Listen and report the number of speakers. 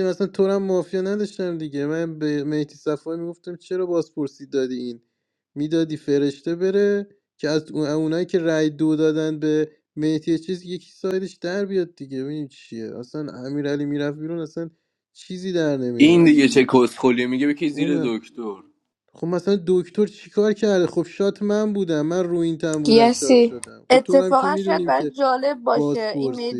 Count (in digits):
3